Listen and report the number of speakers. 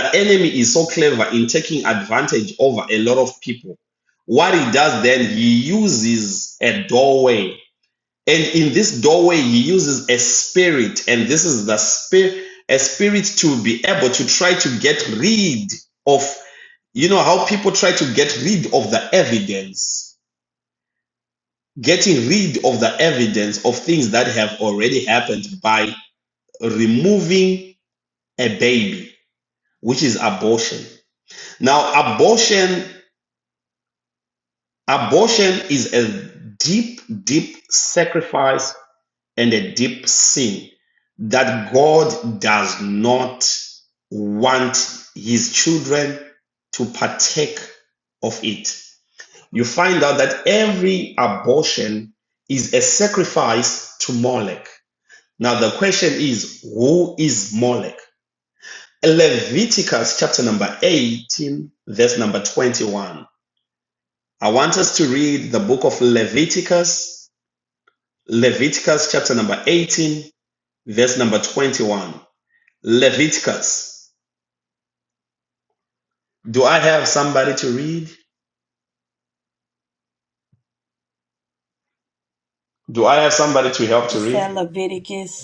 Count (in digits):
2